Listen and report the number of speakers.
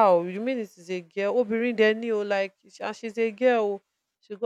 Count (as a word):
one